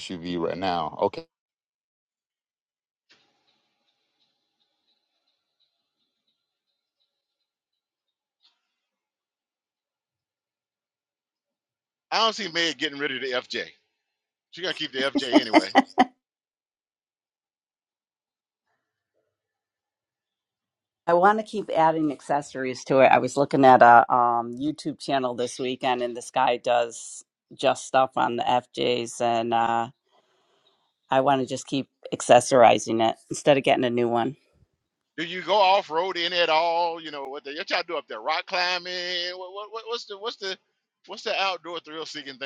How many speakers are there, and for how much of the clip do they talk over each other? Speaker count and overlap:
3, no overlap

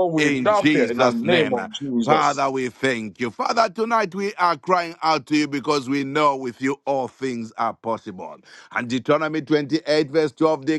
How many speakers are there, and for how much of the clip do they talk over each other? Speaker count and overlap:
2, about 15%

